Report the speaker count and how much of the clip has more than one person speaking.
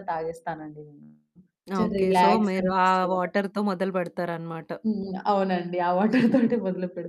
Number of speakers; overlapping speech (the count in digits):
2, about 18%